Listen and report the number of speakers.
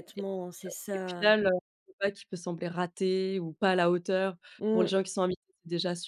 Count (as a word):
two